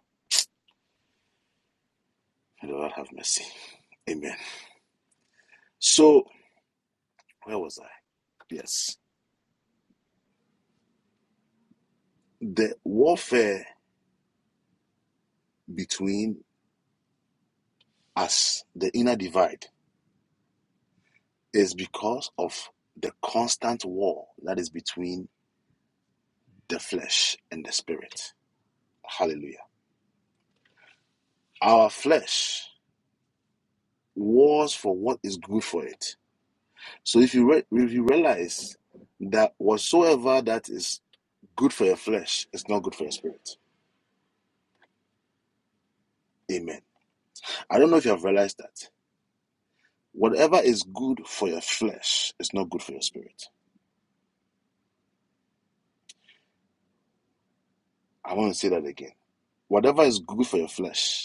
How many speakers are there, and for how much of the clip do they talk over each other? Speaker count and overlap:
1, no overlap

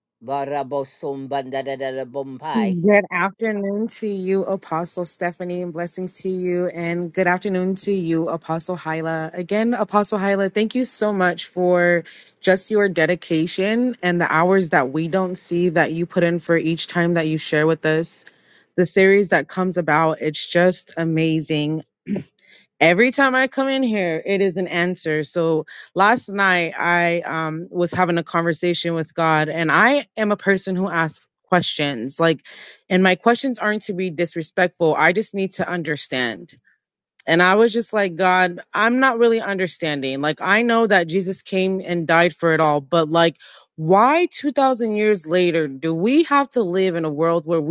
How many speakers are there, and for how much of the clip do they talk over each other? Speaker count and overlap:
2, no overlap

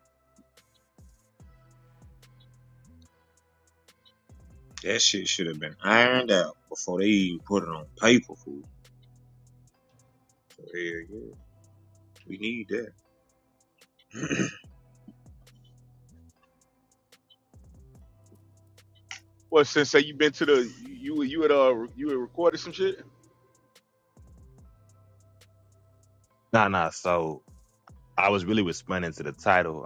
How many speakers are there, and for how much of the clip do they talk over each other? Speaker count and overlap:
3, no overlap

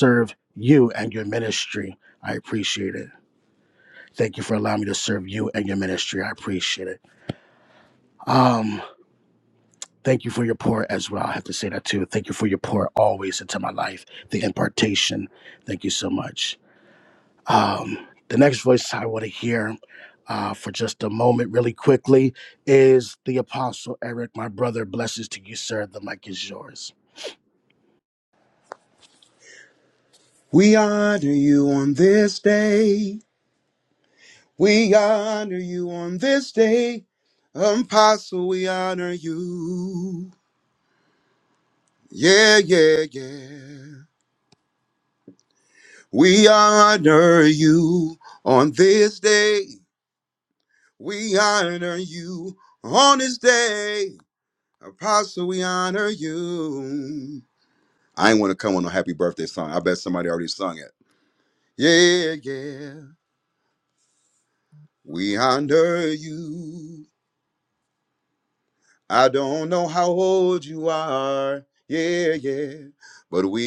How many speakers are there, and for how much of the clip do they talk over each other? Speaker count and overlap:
2, no overlap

